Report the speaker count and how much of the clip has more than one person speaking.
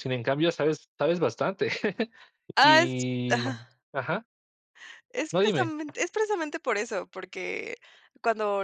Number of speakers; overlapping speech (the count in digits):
2, about 10%